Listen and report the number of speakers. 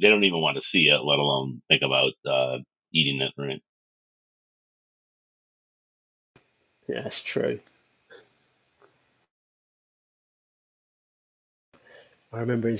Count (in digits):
2